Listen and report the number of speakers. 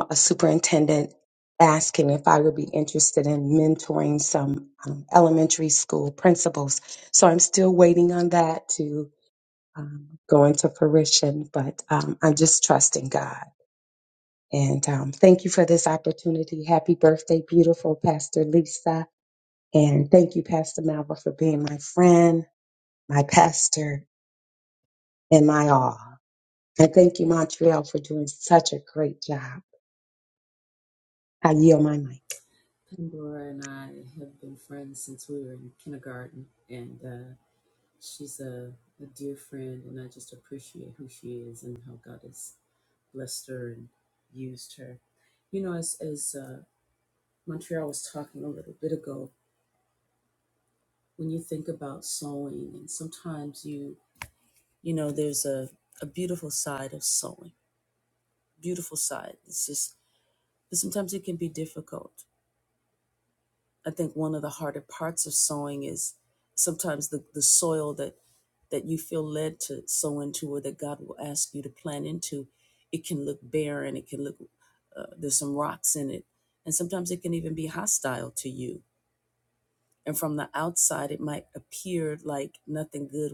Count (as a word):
two